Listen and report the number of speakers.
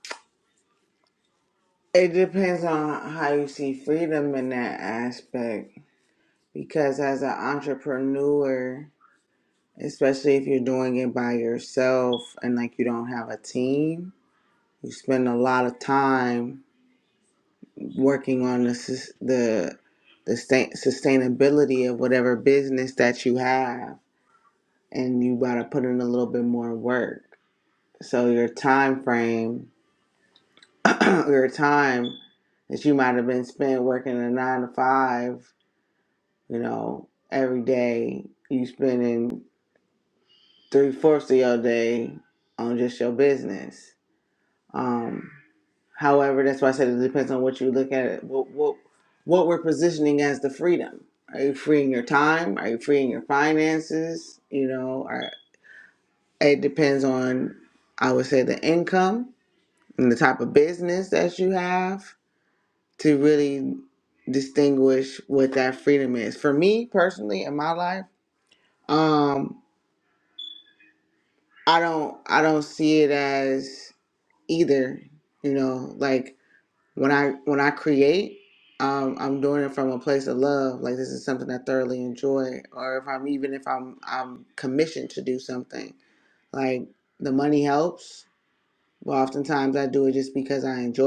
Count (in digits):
1